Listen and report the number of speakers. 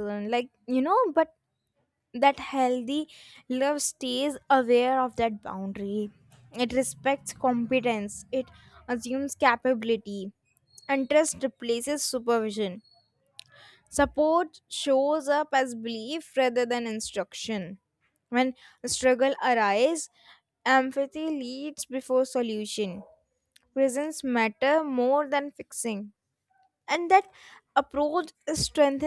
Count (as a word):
one